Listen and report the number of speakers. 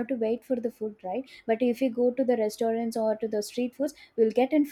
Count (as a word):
one